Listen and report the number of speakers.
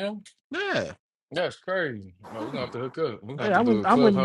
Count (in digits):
2